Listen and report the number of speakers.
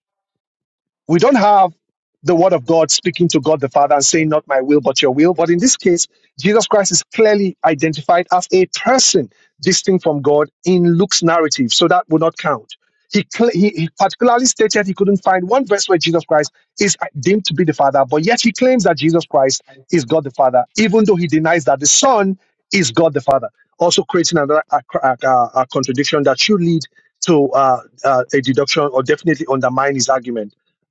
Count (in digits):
1